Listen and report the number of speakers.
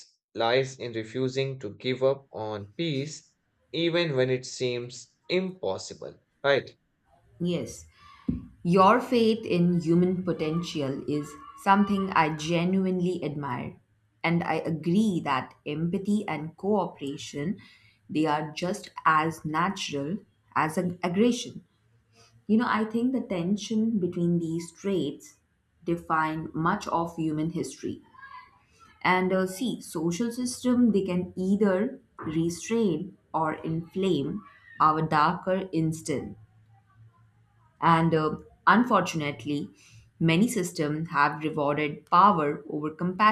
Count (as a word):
two